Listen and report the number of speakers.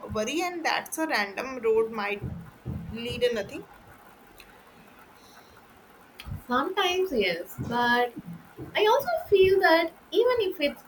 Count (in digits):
2